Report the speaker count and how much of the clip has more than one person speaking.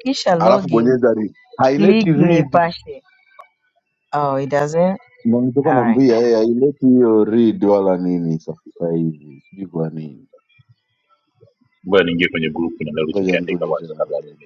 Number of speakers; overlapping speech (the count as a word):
three, about 17%